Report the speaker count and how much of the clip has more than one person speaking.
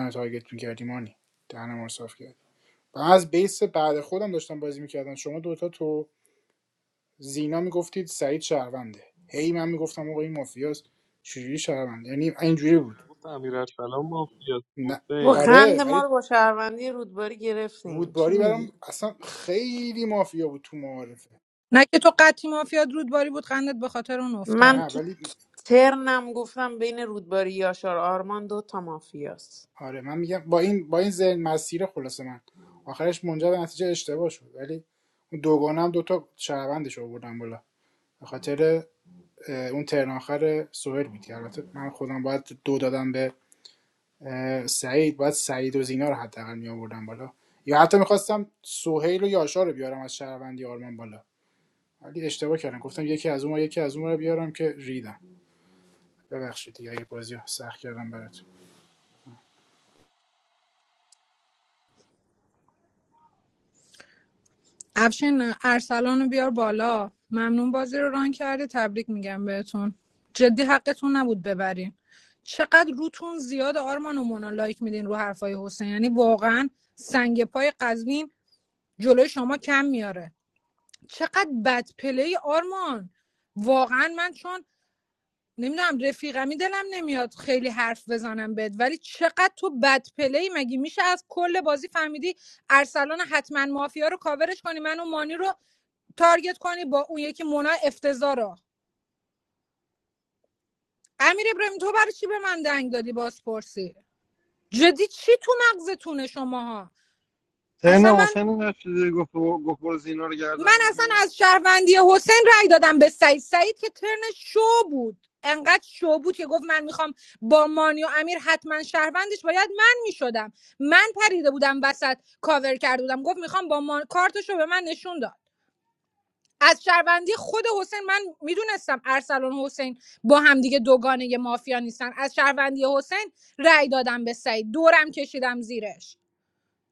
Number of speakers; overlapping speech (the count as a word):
five, about 3%